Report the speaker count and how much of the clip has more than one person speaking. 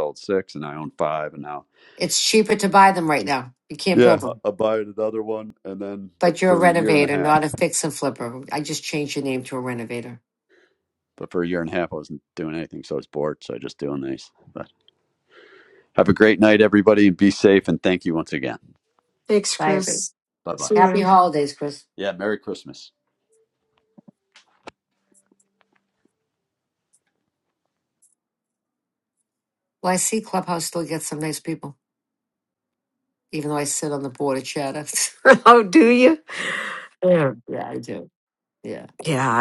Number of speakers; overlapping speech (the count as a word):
three, about 4%